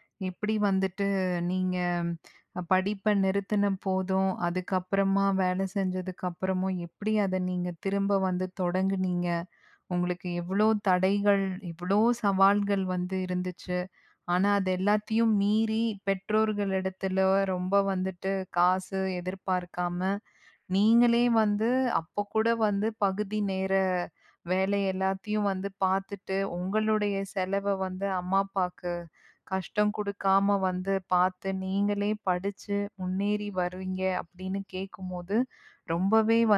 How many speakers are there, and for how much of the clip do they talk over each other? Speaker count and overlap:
one, no overlap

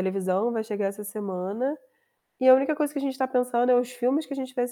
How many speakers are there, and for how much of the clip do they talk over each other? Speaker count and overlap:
one, no overlap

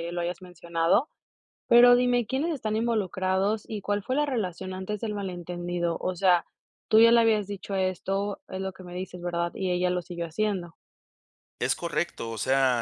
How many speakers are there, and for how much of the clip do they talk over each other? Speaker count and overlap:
two, no overlap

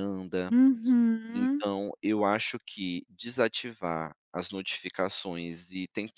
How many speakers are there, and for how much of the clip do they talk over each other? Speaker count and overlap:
two, about 4%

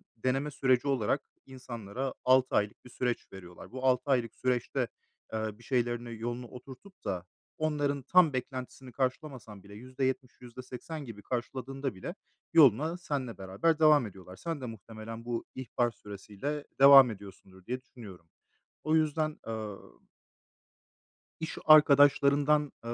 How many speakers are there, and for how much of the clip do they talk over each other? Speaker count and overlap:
one, no overlap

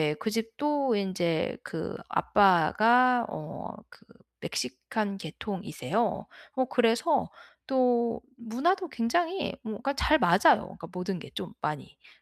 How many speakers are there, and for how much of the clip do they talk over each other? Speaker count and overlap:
one, no overlap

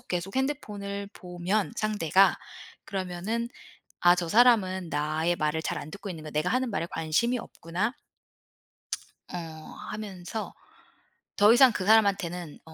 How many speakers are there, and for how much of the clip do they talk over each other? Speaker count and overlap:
one, no overlap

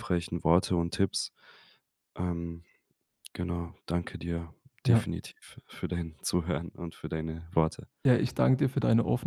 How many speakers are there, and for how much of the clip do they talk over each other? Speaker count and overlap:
two, about 2%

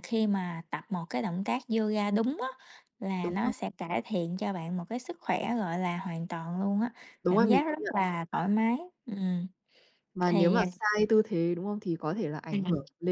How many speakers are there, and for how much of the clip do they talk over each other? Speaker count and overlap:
two, about 13%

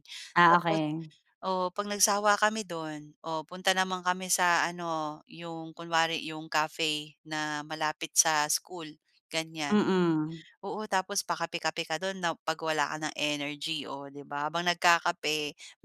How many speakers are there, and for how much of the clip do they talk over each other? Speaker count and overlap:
two, about 3%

